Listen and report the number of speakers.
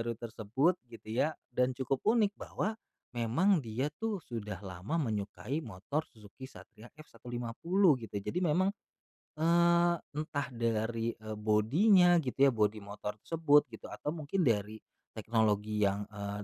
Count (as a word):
one